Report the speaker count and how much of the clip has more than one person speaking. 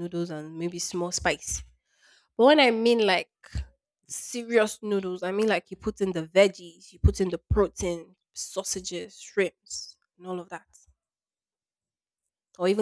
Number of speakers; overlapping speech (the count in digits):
1, no overlap